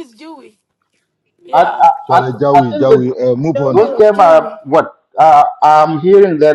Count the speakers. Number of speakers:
3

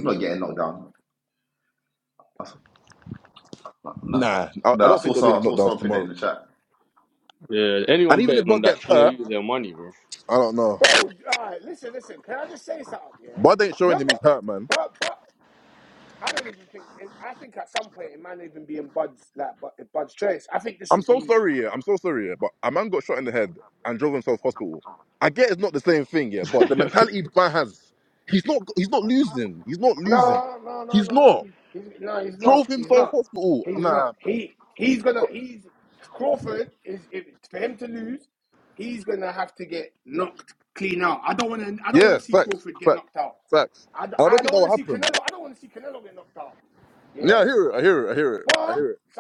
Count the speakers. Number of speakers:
4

